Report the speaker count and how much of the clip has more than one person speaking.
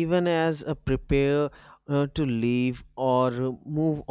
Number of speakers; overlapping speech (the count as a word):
one, no overlap